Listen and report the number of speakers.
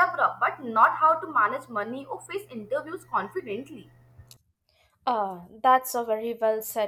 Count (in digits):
2